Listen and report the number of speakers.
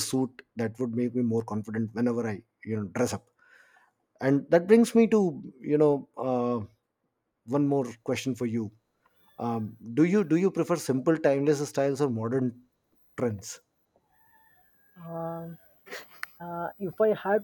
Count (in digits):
2